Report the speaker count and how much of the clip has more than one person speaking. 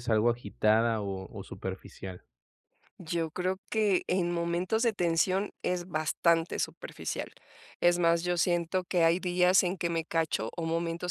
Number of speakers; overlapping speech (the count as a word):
two, no overlap